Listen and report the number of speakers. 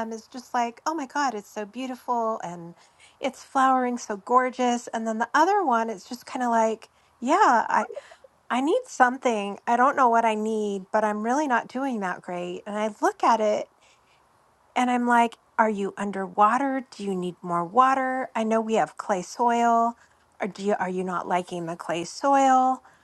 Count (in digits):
1